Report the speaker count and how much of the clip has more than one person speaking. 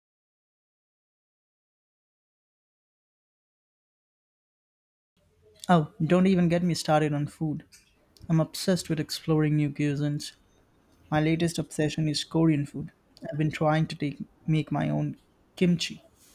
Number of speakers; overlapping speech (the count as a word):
one, no overlap